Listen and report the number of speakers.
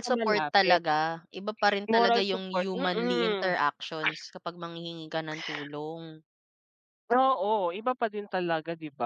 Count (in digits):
2